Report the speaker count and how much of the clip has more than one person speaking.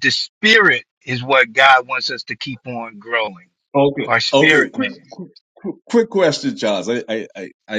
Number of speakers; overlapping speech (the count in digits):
2, about 11%